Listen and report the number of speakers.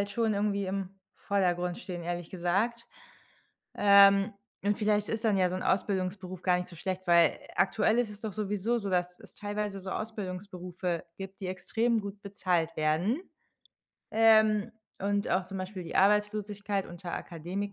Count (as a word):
one